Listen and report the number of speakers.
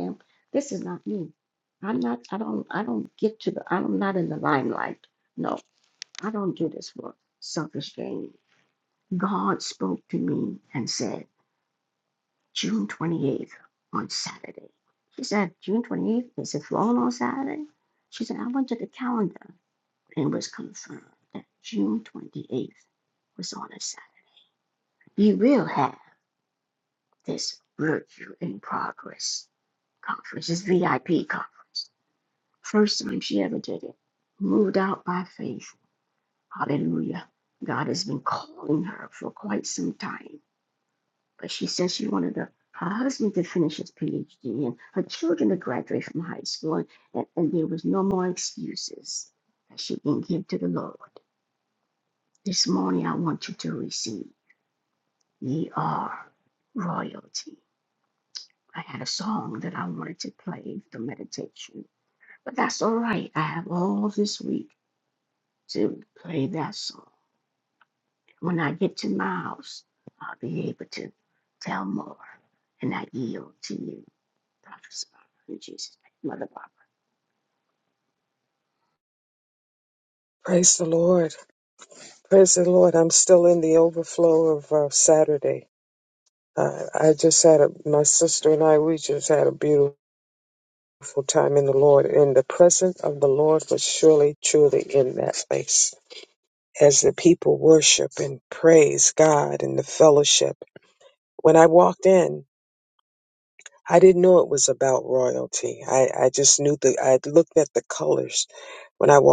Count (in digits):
2